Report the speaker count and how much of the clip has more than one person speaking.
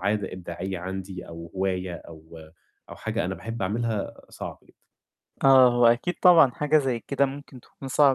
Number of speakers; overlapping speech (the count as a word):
two, no overlap